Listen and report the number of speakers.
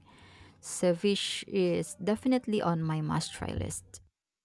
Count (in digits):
1